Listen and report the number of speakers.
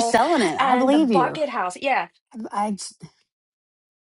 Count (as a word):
two